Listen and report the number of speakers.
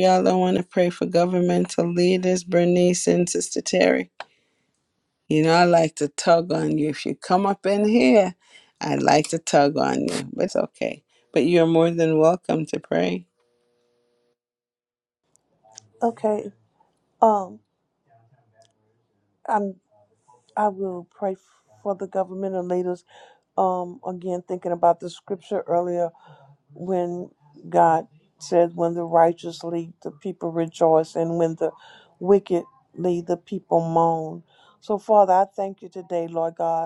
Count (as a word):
two